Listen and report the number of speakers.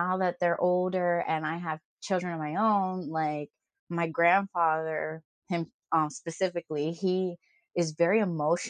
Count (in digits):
1